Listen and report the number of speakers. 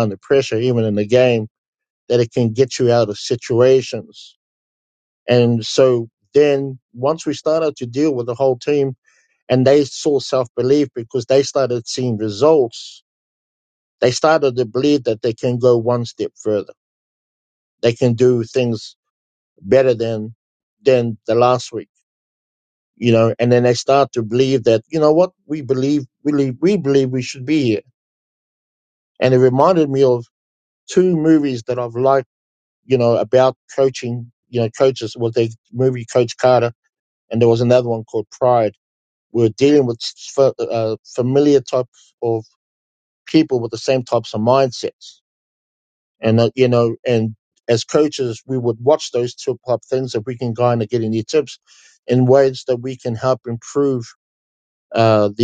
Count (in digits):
1